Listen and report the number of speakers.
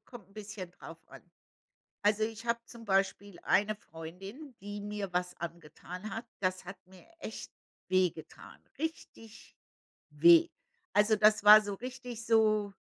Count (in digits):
1